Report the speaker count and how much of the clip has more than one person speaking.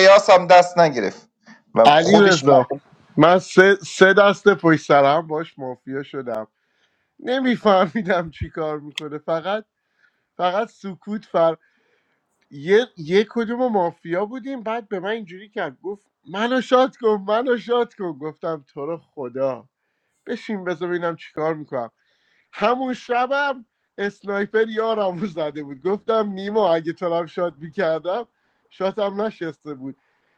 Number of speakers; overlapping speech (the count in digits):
2, about 3%